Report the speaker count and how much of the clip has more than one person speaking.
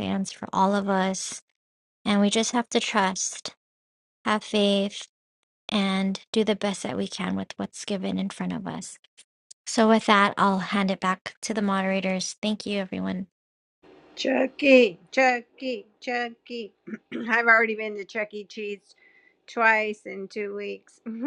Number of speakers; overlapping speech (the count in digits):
2, no overlap